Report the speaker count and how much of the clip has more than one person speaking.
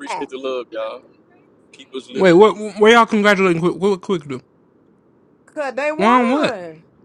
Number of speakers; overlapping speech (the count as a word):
three, about 12%